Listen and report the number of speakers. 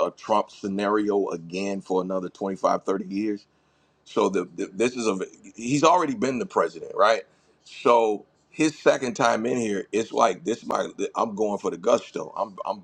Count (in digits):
1